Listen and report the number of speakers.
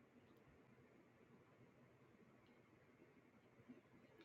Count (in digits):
0